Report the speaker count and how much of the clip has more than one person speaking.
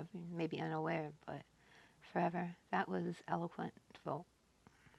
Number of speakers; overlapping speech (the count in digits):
1, no overlap